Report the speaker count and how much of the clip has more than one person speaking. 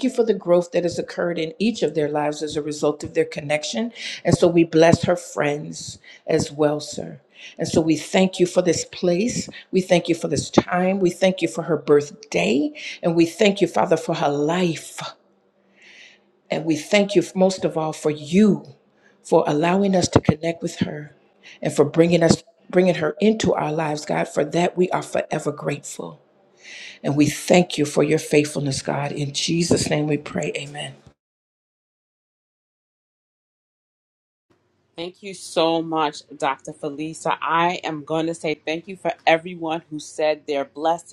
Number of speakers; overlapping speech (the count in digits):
2, no overlap